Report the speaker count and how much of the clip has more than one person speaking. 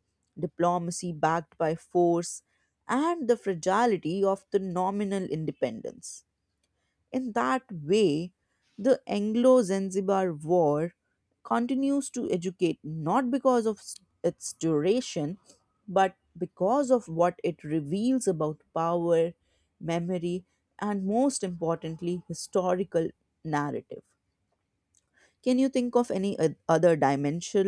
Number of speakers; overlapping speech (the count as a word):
one, no overlap